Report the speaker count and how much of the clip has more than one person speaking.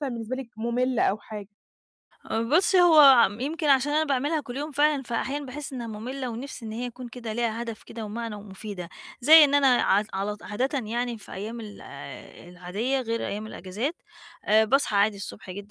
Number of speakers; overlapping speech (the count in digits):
2, no overlap